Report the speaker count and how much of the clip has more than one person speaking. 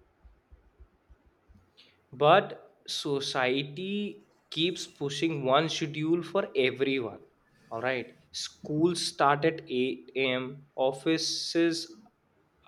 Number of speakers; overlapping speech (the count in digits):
1, no overlap